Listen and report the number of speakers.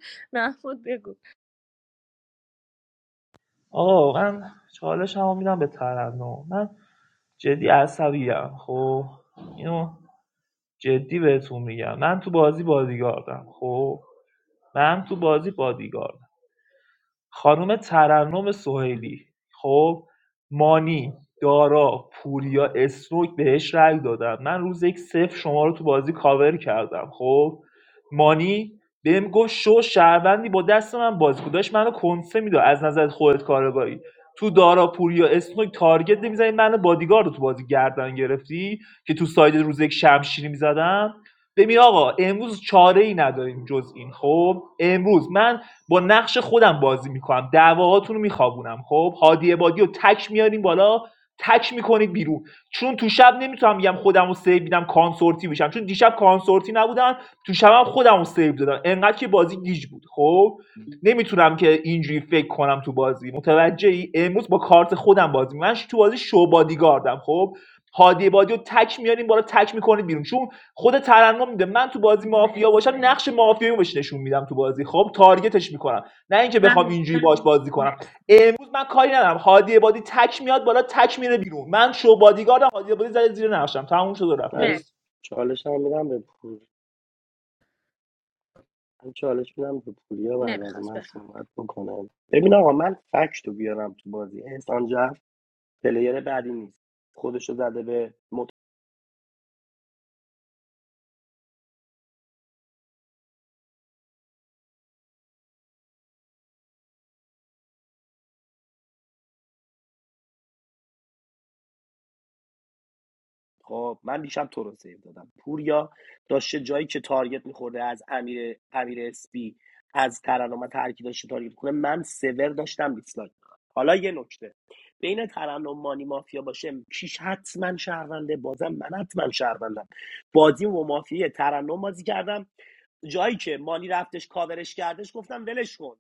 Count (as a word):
three